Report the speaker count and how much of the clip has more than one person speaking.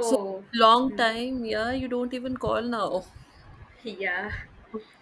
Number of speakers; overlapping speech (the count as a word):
two, about 6%